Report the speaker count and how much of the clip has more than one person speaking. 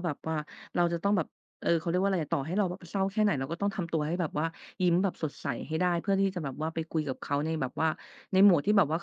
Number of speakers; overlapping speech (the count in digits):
1, no overlap